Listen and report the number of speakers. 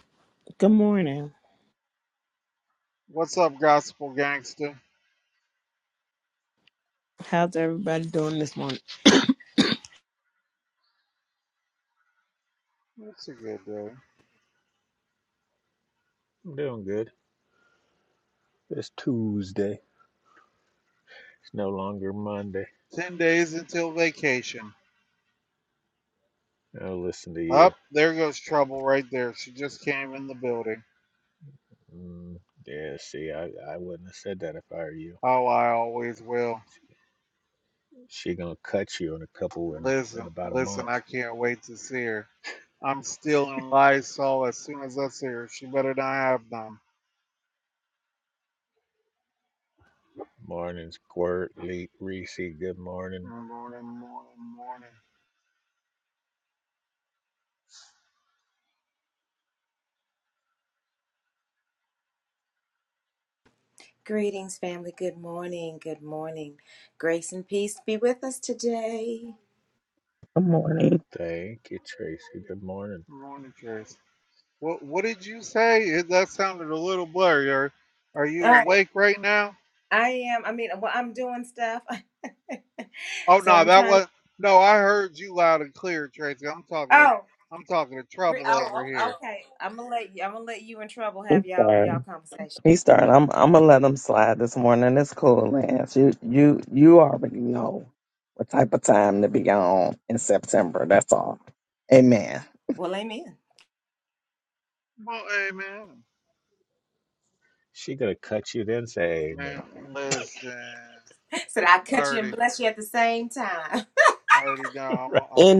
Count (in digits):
5